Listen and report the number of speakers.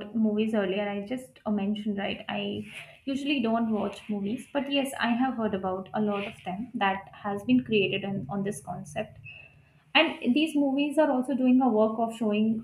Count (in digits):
1